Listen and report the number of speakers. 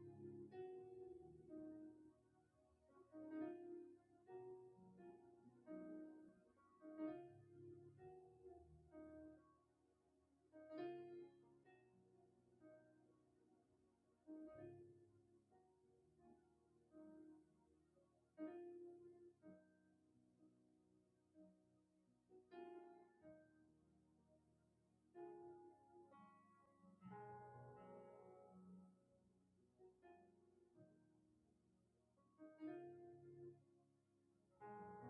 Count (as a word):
zero